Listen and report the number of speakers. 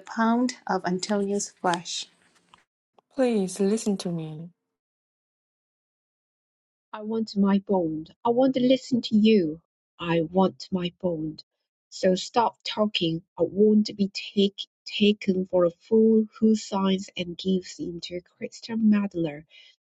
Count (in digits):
3